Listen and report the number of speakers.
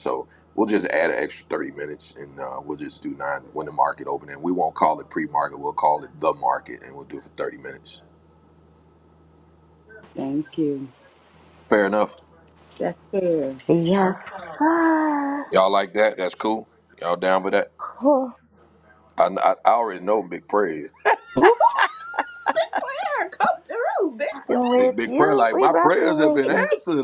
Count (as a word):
three